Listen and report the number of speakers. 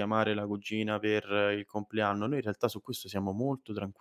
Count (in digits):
1